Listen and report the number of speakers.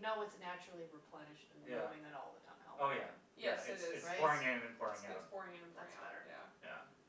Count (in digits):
3